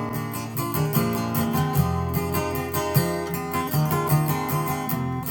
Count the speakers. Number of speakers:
0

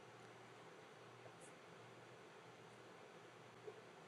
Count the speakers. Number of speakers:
0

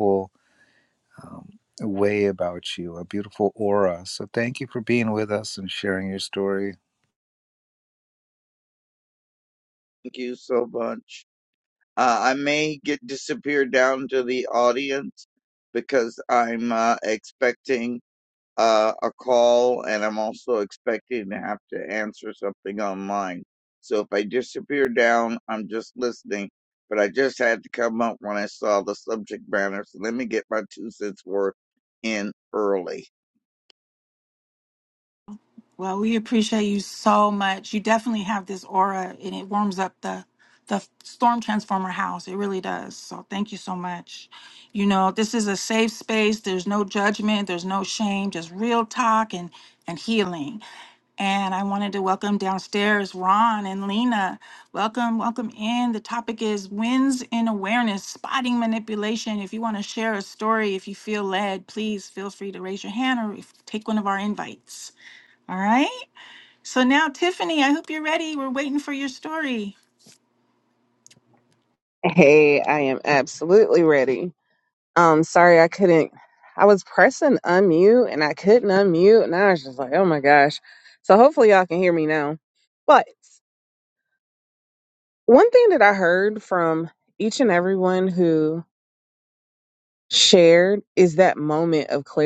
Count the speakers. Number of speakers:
4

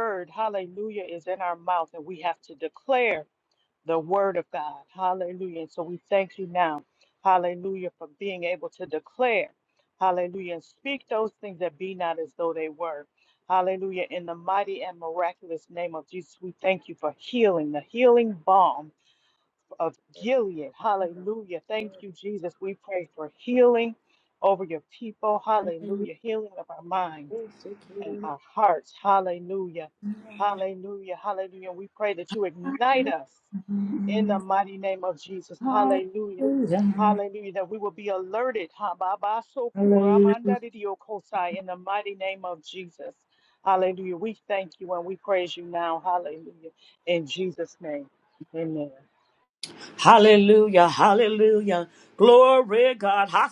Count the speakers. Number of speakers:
2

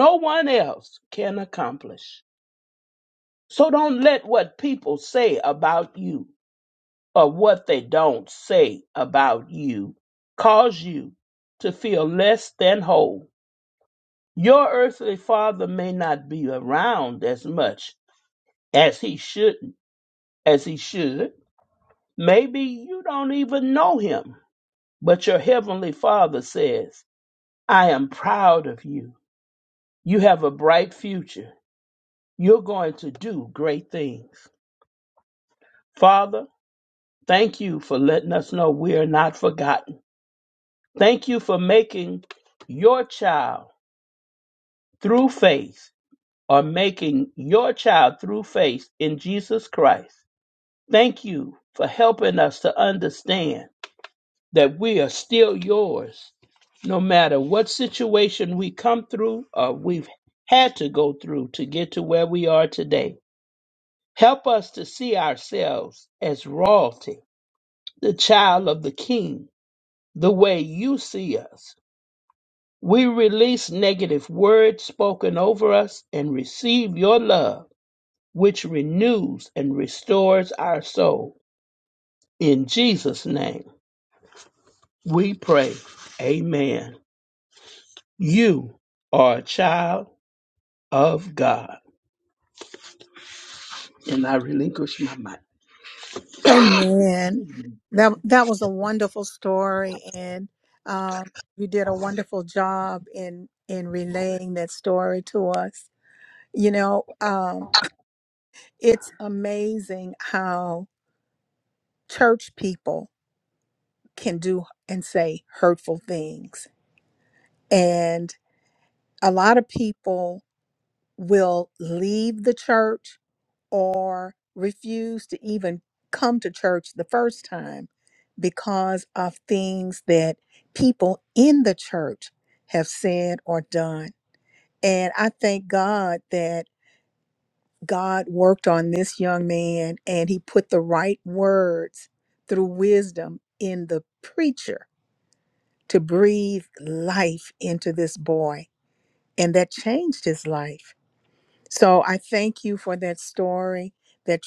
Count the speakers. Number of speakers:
2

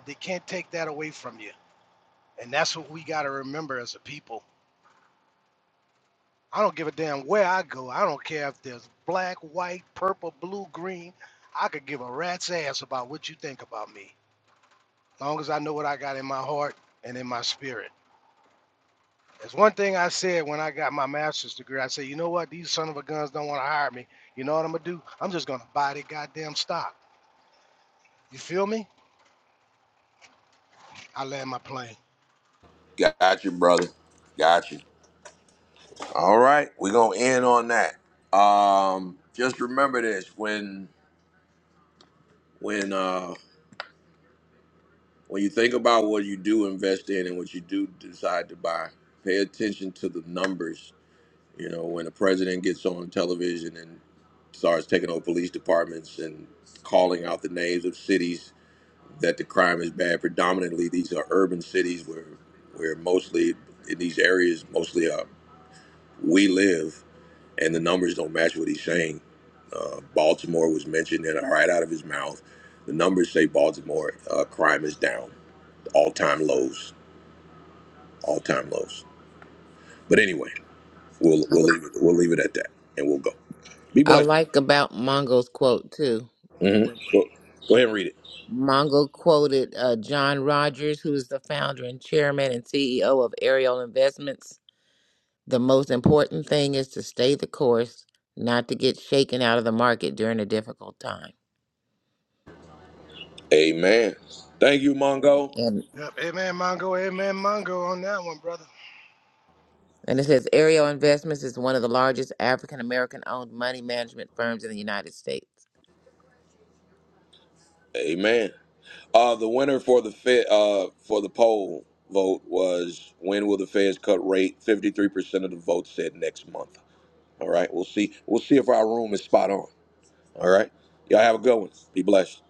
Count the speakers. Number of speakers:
3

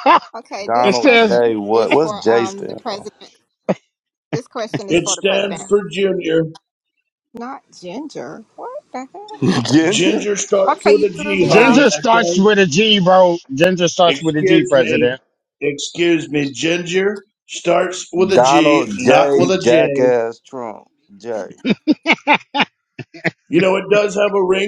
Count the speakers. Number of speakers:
4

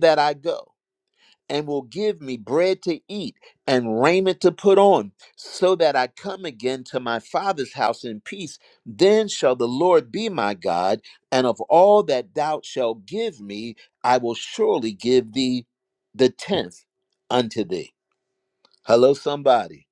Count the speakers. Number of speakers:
1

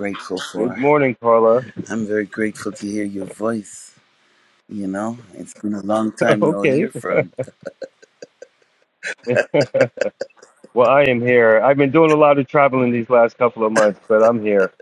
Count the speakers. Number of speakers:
2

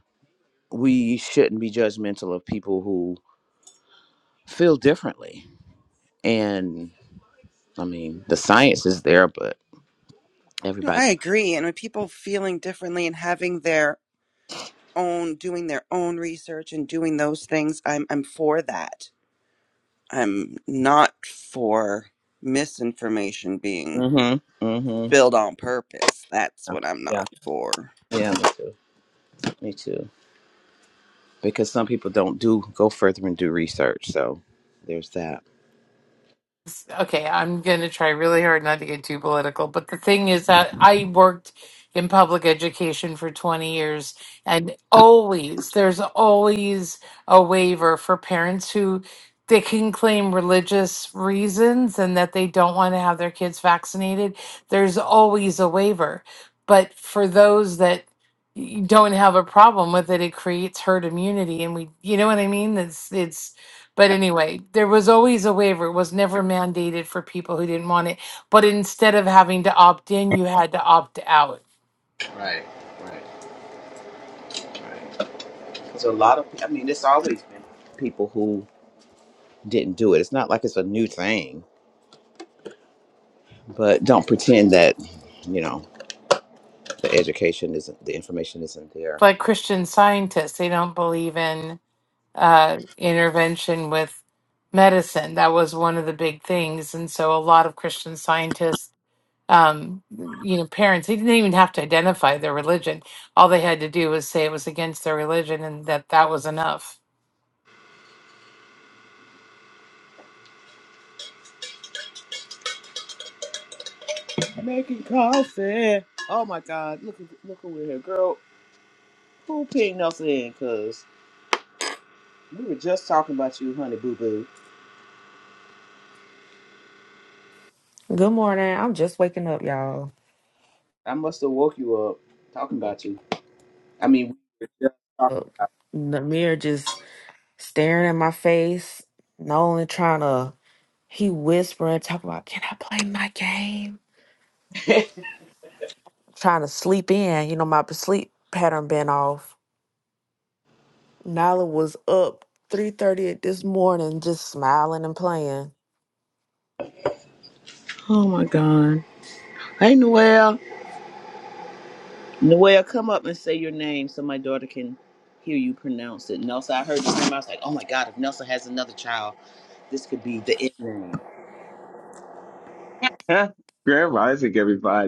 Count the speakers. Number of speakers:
5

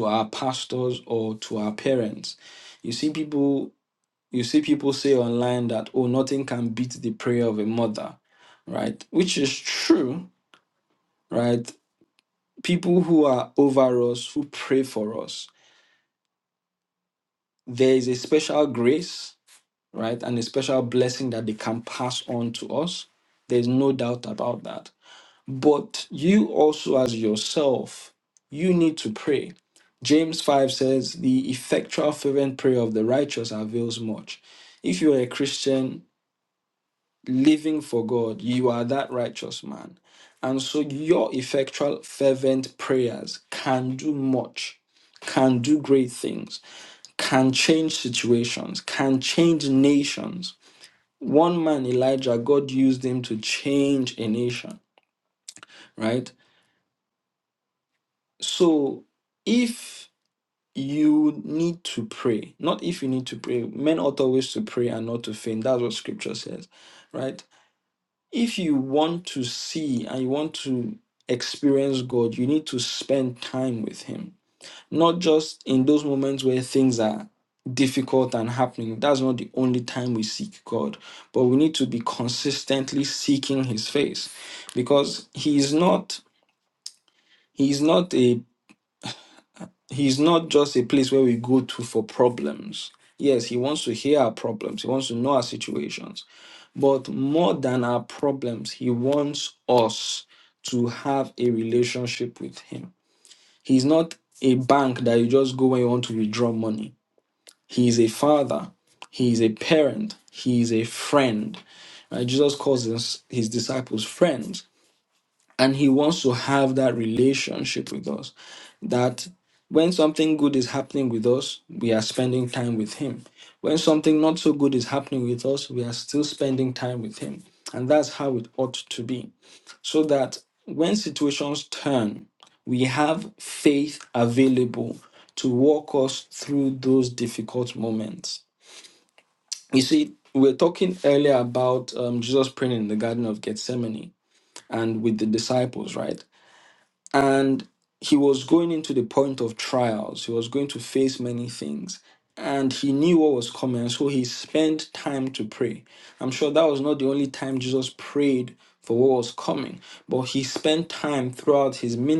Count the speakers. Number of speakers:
1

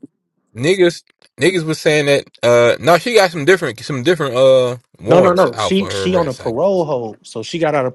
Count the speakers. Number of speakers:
2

